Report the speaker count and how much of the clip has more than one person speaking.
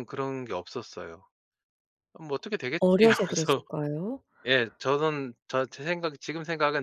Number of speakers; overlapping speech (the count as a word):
two, about 12%